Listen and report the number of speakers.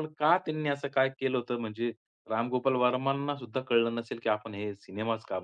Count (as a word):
one